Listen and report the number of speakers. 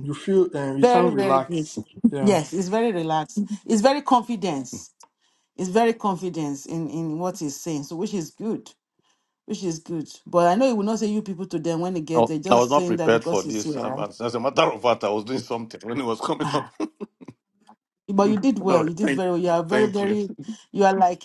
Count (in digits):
3